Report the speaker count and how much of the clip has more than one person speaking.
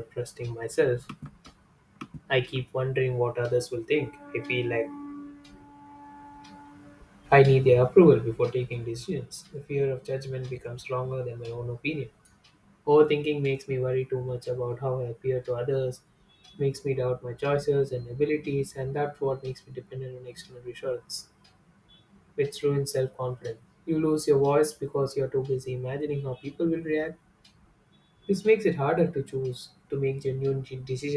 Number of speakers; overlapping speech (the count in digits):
1, no overlap